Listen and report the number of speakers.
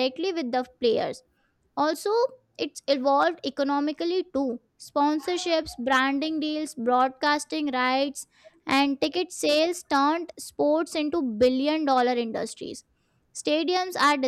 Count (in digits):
1